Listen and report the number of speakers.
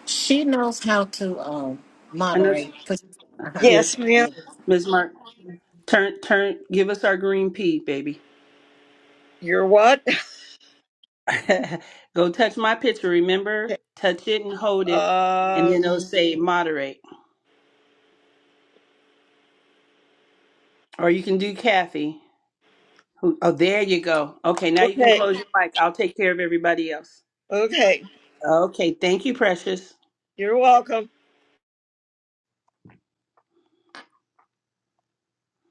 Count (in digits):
3